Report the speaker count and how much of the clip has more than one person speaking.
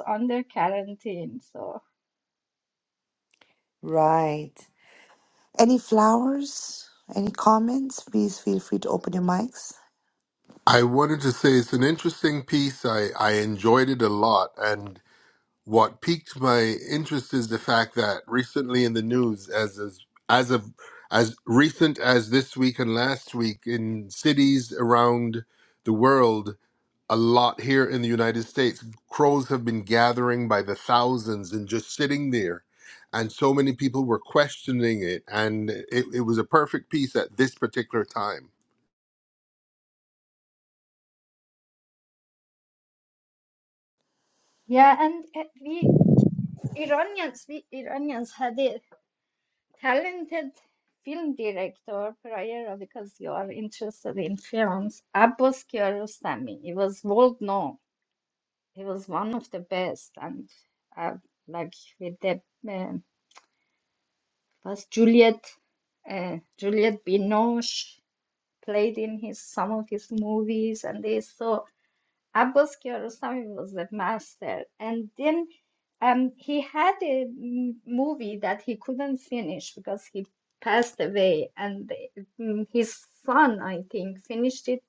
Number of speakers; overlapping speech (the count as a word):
three, no overlap